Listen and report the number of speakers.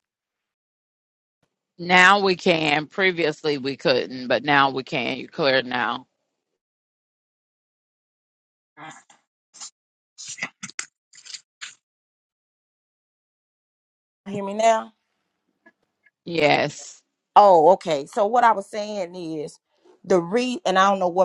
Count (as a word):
two